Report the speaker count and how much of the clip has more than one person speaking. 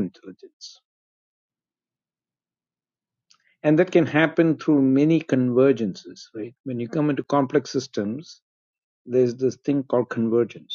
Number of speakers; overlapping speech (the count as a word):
one, no overlap